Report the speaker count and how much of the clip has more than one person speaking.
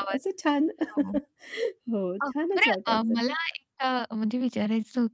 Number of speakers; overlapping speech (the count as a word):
two, about 26%